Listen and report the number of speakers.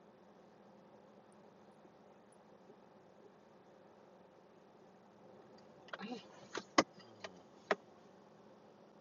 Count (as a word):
zero